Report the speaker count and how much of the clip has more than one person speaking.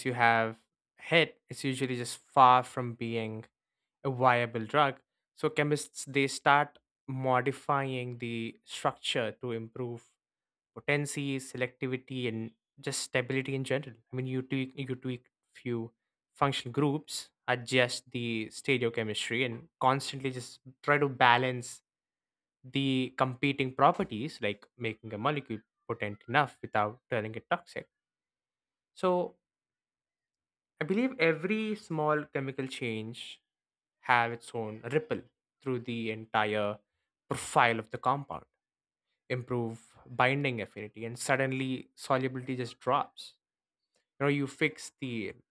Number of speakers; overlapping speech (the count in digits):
1, no overlap